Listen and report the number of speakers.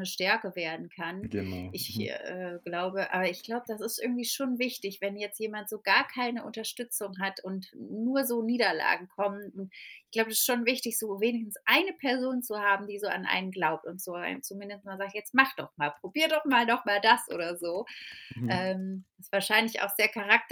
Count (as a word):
two